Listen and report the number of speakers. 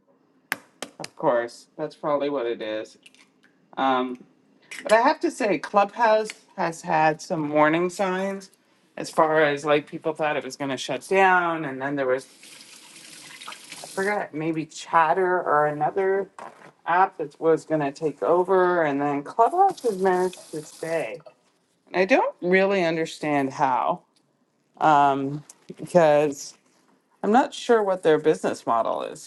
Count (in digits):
1